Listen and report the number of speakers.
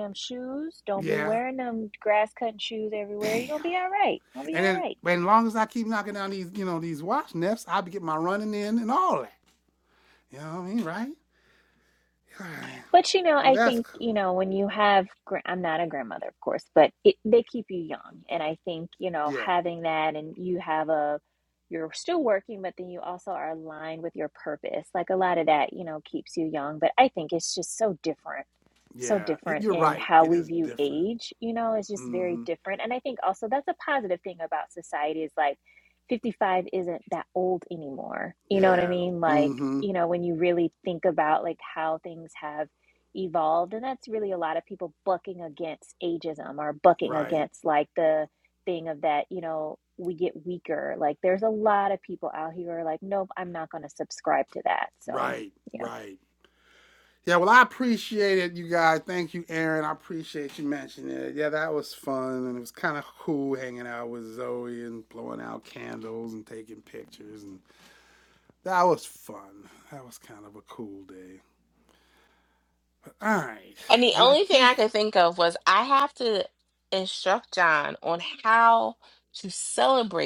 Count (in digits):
3